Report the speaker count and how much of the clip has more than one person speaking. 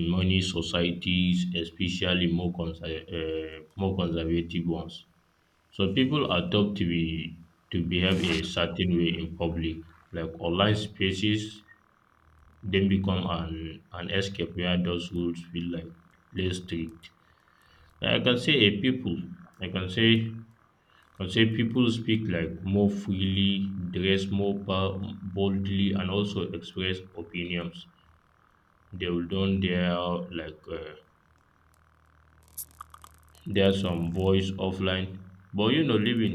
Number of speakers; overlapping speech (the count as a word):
one, no overlap